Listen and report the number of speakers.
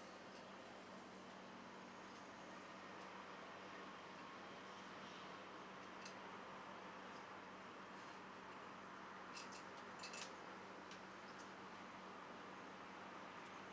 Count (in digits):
0